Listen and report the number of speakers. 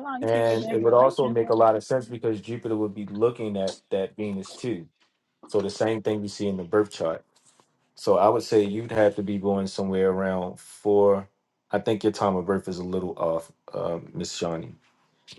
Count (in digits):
1